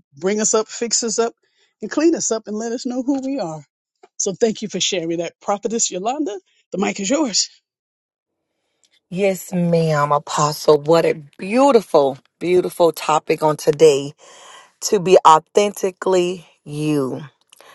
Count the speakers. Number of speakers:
2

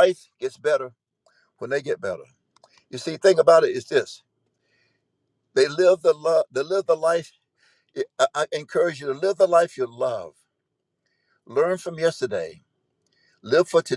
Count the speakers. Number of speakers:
1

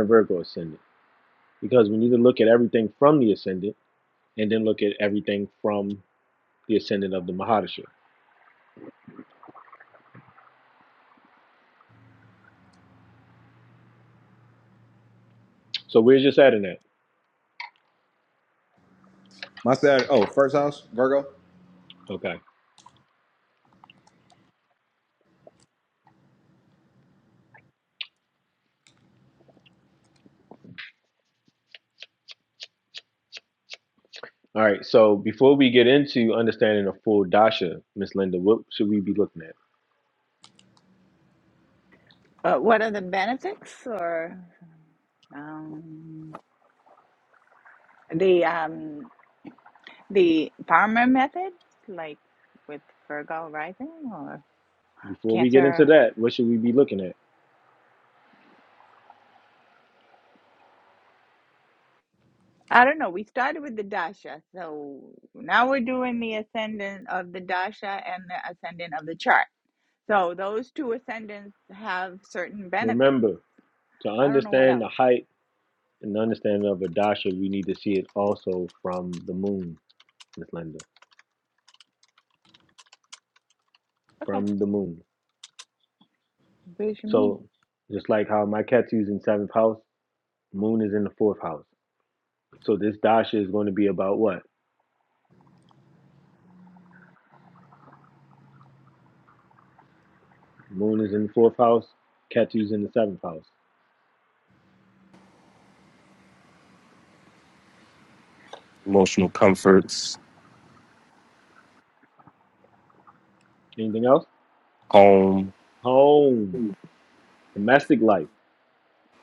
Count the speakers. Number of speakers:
4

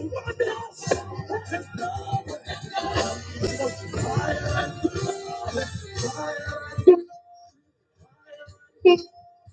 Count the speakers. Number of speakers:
0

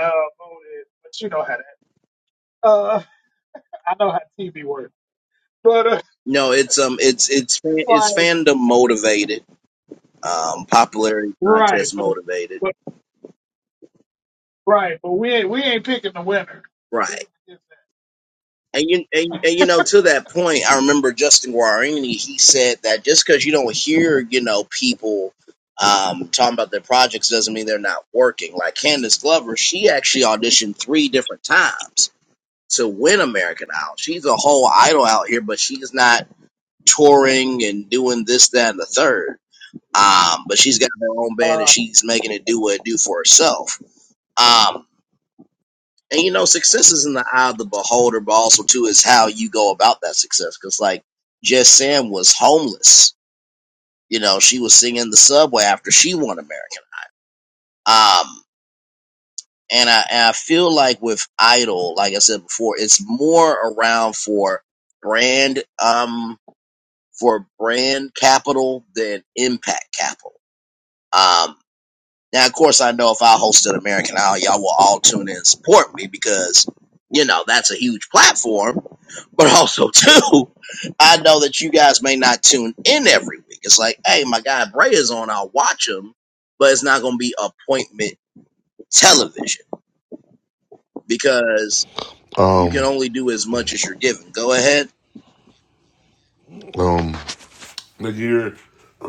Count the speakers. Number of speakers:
3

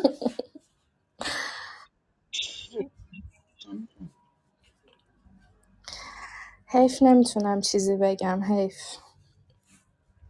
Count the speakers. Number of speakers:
1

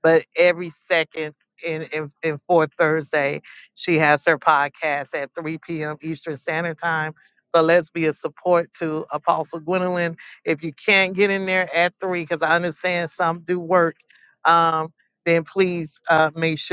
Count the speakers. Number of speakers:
1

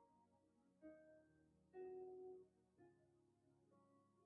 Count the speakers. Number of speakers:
0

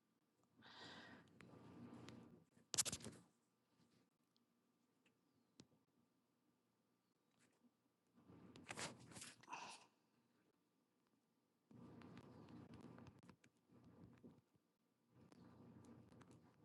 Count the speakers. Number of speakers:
0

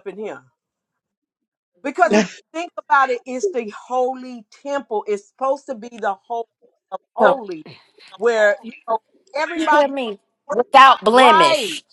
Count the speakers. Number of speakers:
2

